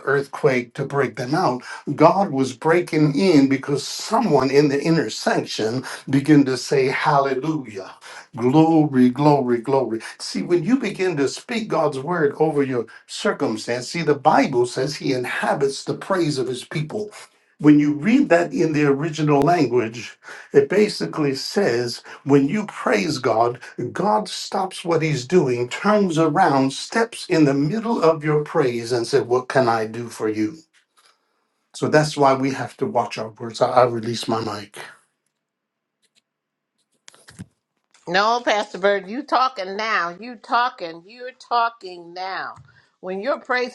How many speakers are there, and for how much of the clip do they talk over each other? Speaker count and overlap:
2, no overlap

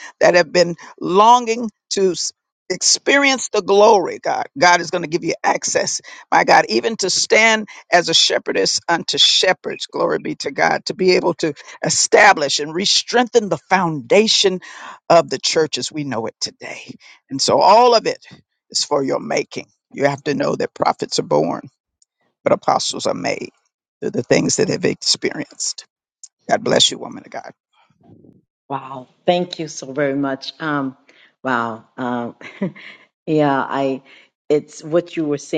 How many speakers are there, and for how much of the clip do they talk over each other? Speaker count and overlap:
2, no overlap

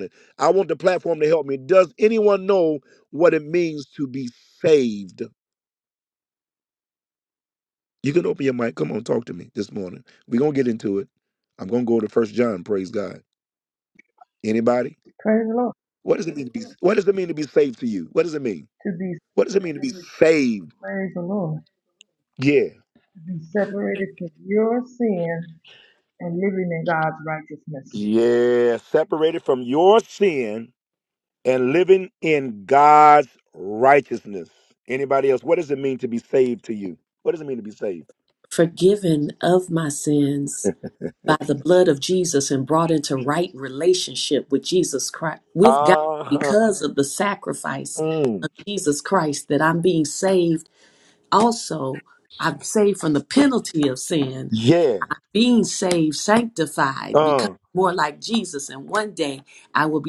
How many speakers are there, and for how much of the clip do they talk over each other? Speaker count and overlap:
3, about 2%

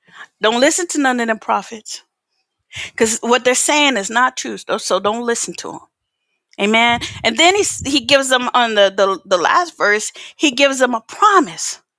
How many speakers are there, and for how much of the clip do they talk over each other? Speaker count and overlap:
1, no overlap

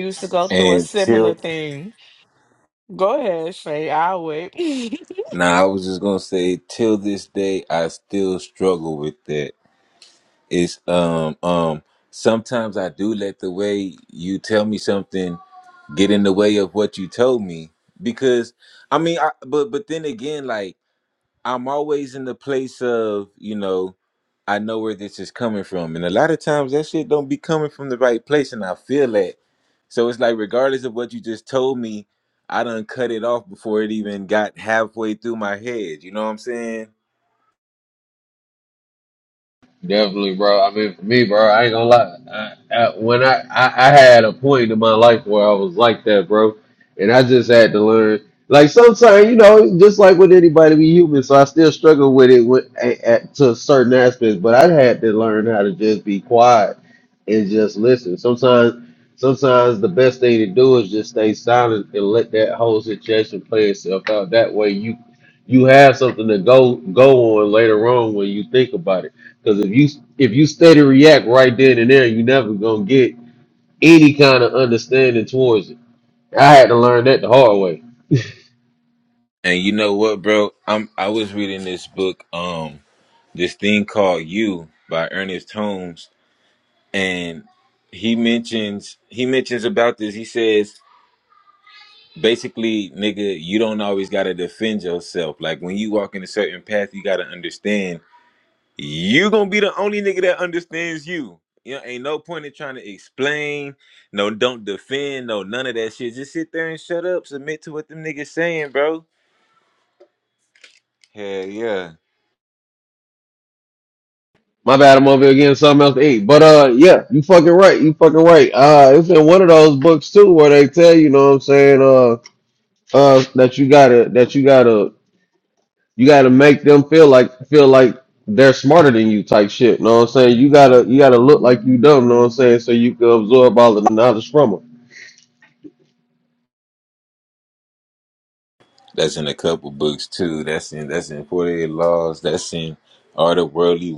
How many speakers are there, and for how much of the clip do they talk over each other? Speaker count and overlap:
3, about 1%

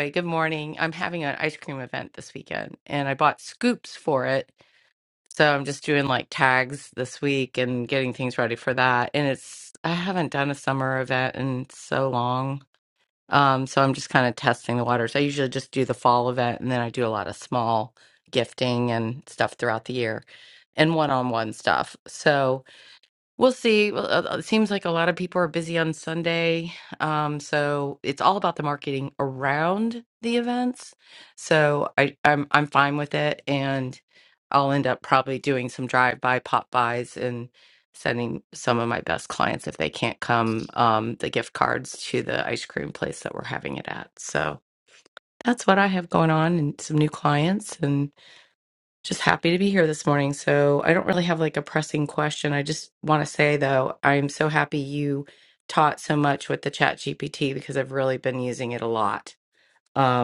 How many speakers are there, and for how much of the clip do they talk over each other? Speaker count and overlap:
1, no overlap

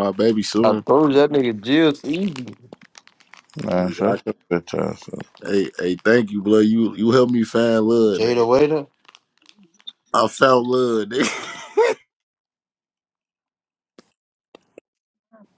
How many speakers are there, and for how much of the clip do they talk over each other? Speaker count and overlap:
3, about 3%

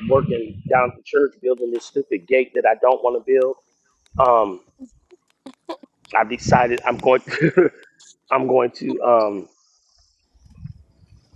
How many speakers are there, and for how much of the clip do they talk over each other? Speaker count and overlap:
1, no overlap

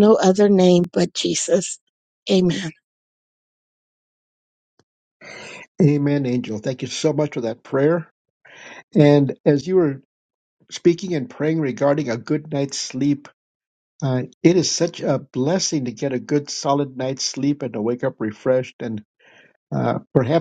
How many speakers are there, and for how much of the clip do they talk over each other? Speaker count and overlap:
2, no overlap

